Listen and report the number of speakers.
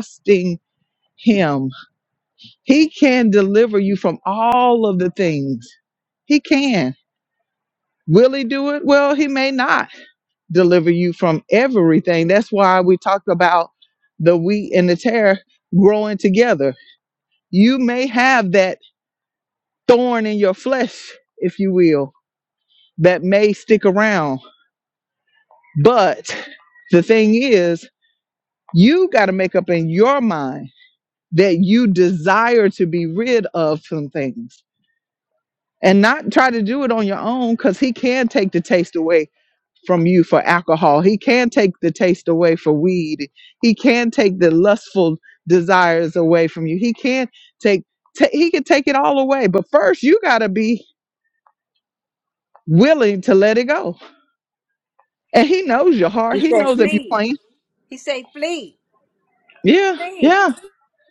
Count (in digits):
2